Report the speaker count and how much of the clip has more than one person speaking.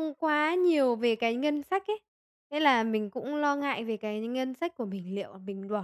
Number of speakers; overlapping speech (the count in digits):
1, no overlap